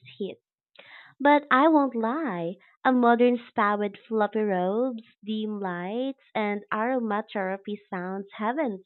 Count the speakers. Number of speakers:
1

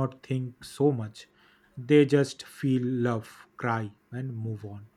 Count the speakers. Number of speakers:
1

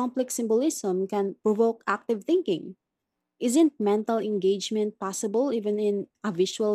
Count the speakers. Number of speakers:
1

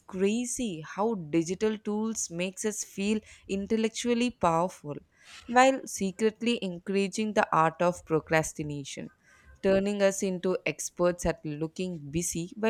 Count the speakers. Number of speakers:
1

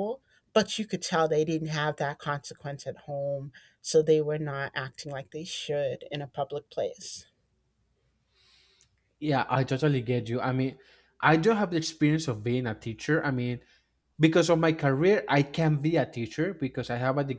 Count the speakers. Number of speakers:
2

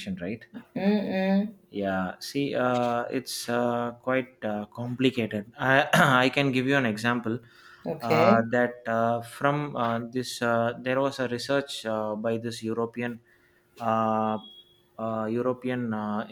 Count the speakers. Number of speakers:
2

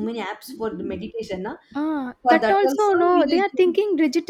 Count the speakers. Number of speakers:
2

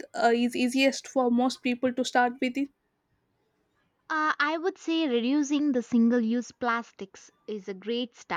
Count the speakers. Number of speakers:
2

